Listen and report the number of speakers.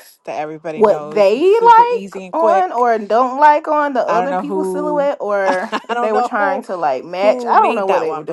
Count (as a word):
two